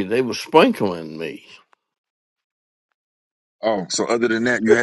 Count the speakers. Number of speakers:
two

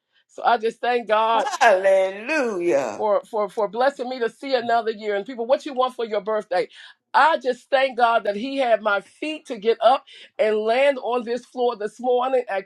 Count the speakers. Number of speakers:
two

